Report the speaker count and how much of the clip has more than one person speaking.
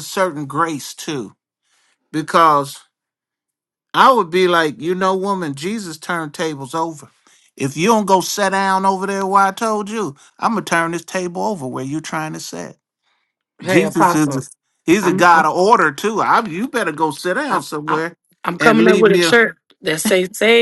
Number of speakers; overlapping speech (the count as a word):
two, about 12%